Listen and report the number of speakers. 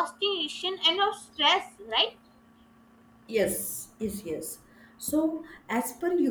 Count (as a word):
two